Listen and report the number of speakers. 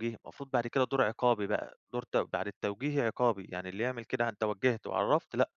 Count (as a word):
one